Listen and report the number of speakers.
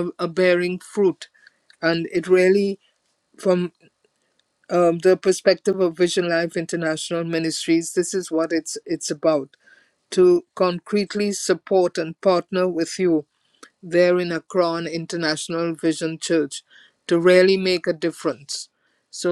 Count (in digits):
1